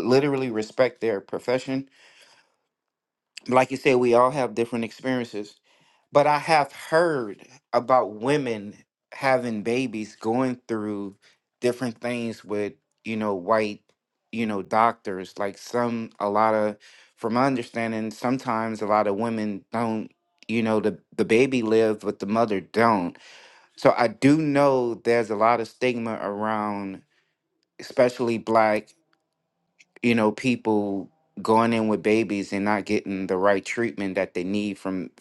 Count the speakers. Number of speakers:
one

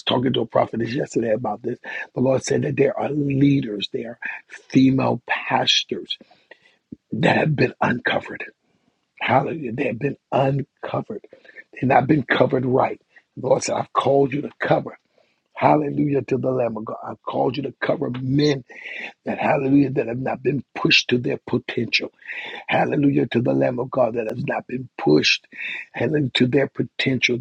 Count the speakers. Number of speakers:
one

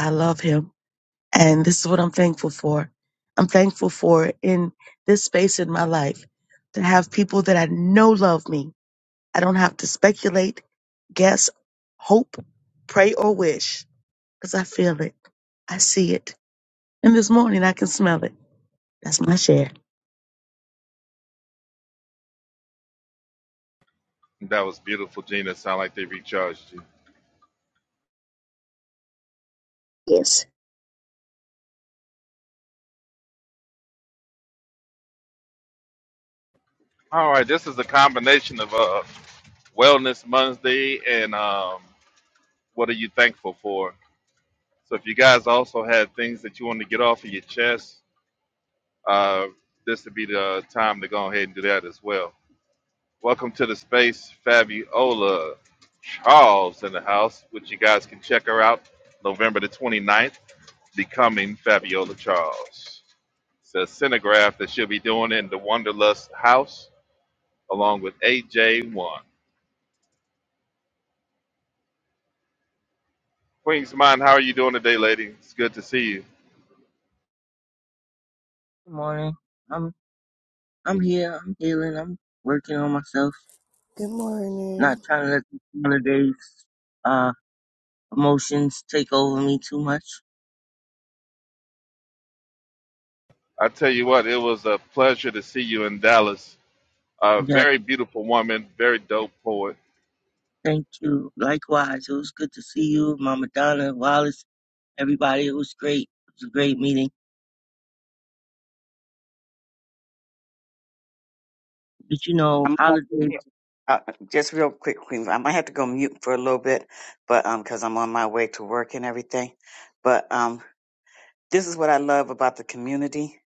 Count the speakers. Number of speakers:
five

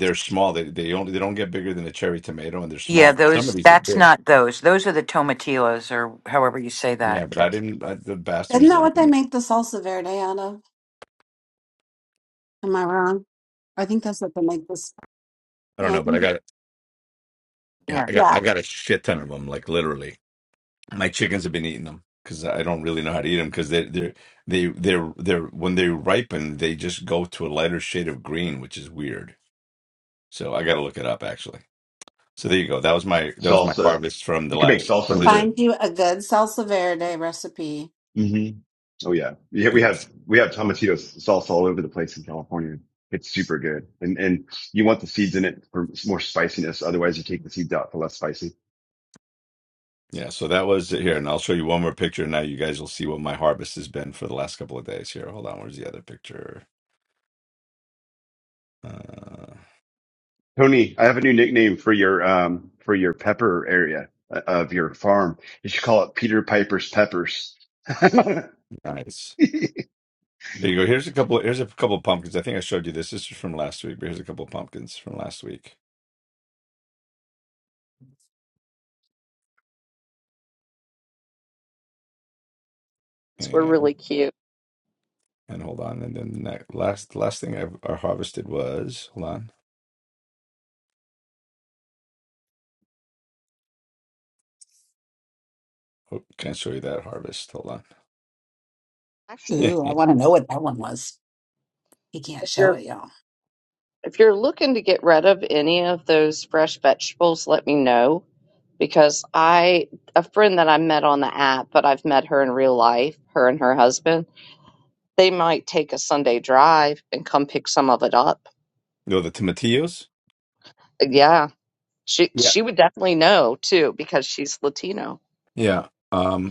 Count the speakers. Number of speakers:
five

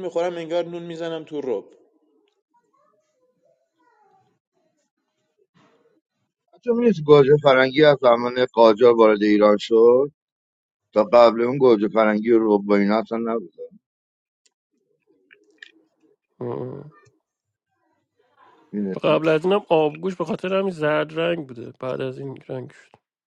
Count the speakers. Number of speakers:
three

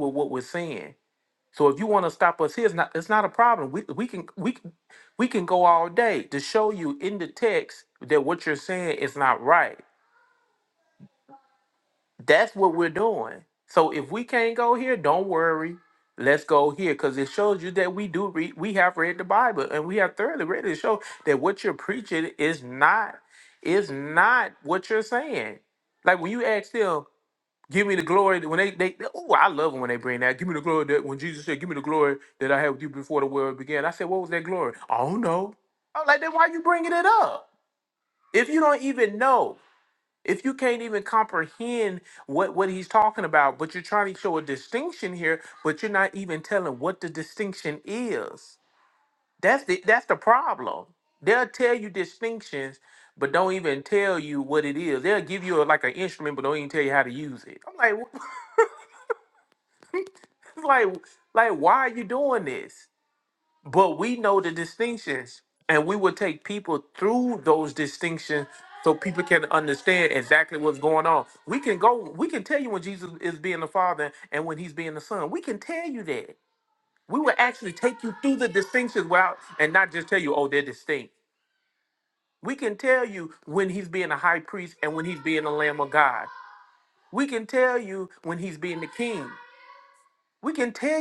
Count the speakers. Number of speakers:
one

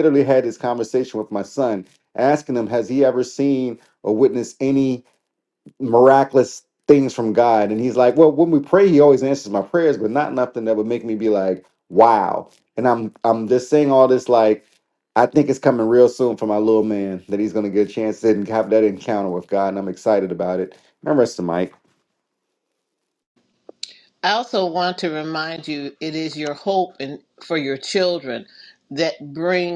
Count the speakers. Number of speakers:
two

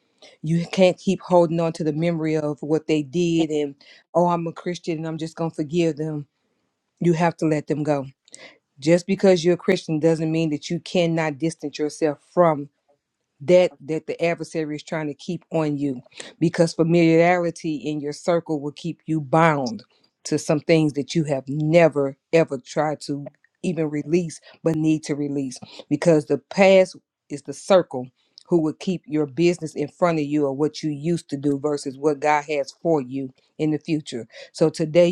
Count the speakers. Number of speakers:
one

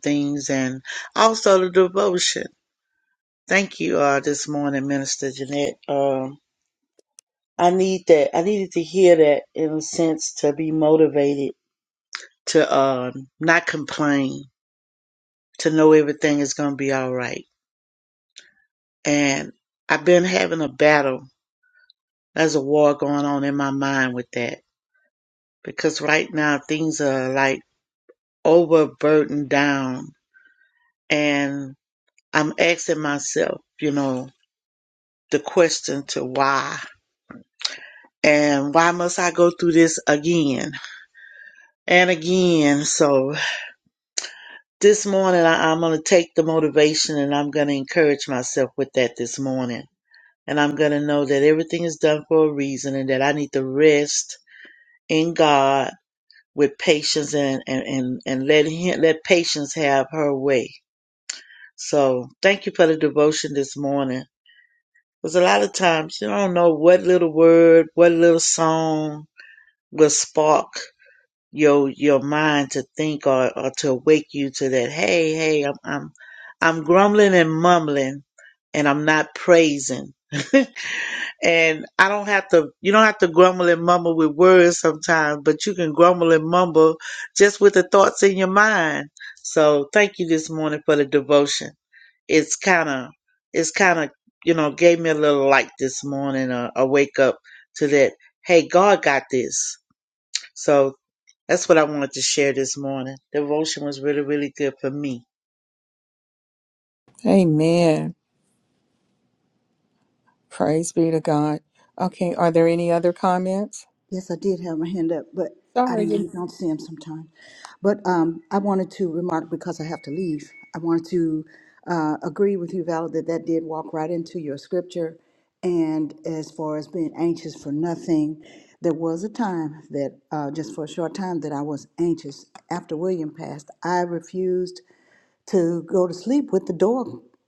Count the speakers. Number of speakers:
three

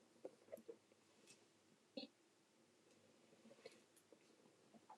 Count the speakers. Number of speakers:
zero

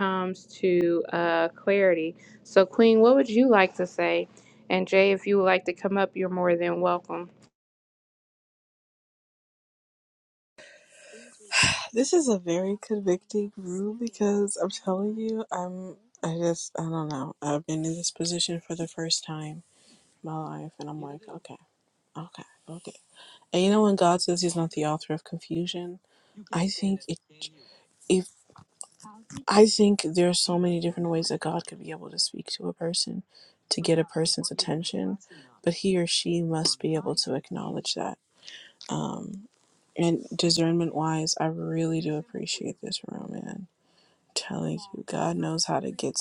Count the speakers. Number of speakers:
two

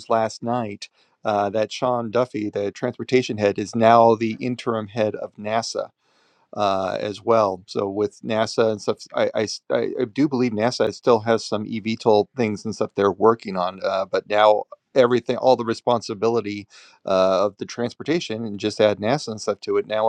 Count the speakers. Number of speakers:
one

